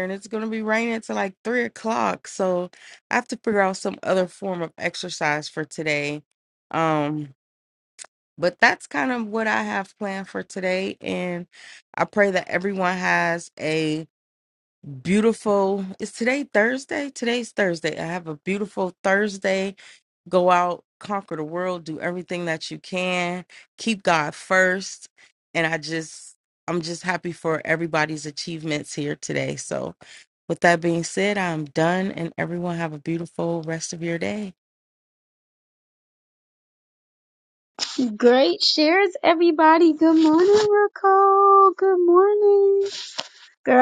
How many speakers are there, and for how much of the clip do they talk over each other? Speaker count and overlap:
two, no overlap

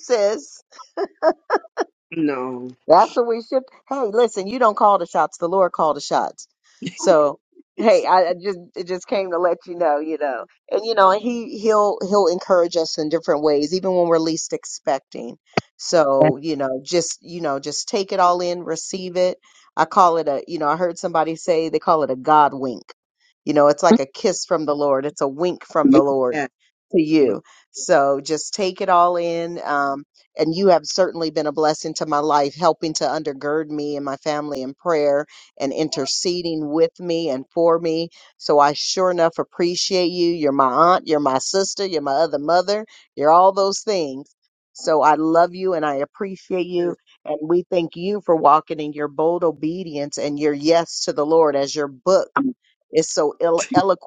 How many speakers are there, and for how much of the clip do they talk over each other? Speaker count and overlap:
two, about 1%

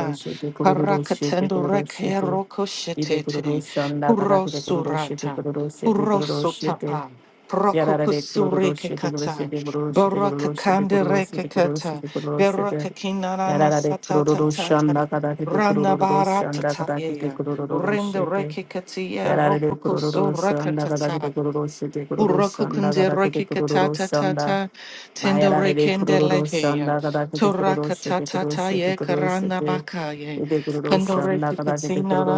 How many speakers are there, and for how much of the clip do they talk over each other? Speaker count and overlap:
two, about 67%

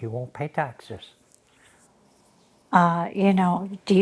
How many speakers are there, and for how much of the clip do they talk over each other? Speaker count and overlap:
two, no overlap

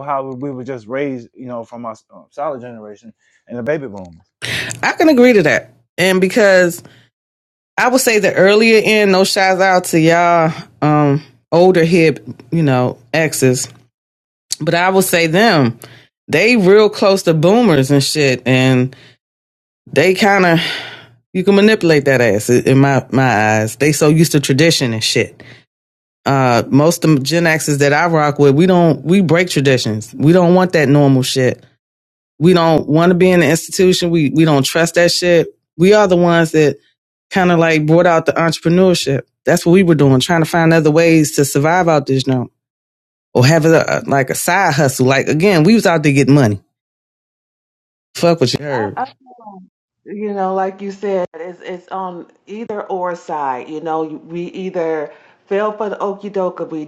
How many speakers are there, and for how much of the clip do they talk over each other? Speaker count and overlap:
three, under 1%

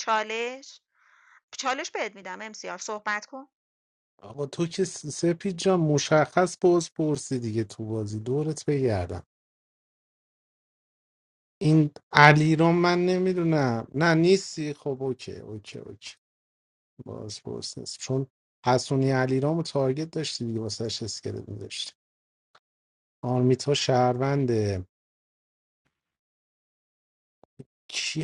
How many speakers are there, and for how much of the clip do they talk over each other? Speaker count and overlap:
two, no overlap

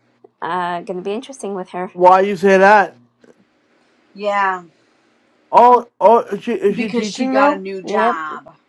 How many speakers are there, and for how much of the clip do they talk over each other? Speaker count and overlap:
three, about 14%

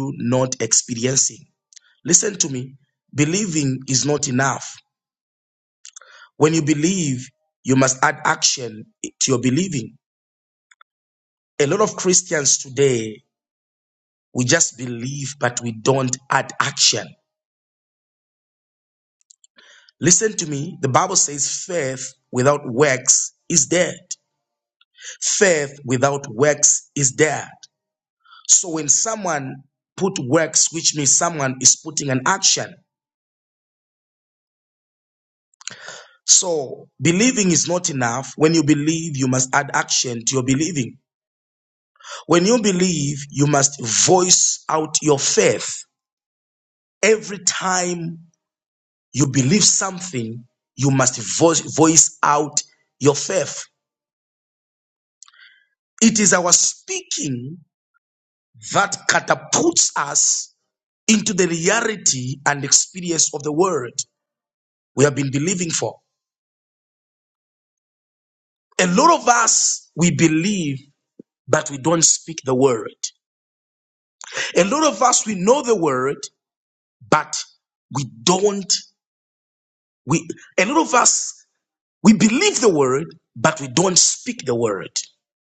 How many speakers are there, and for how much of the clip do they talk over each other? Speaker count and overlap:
one, no overlap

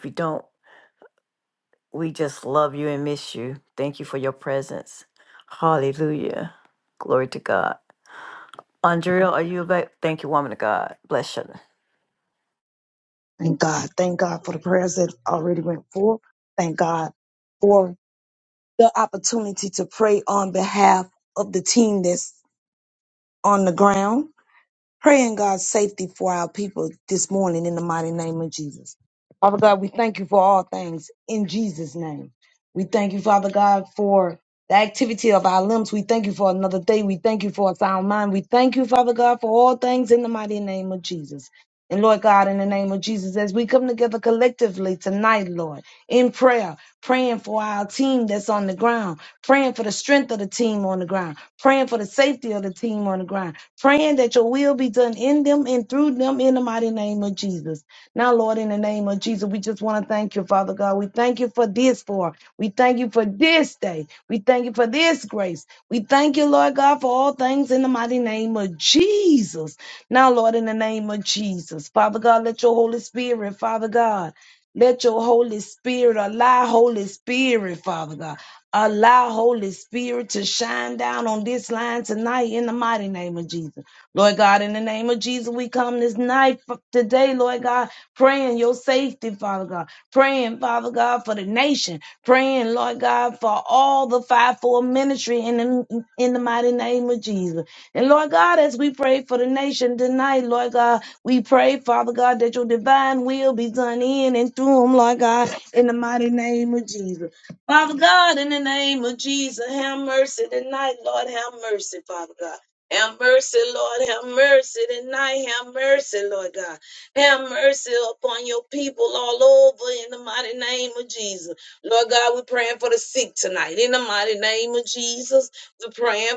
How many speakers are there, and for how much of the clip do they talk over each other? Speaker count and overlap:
two, no overlap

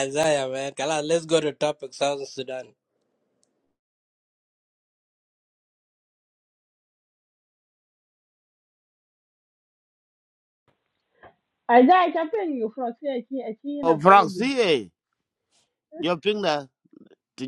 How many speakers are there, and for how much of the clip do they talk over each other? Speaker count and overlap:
three, about 3%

